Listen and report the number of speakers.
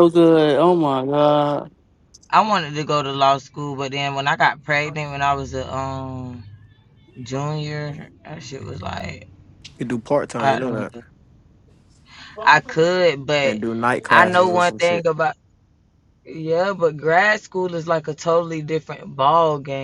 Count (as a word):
three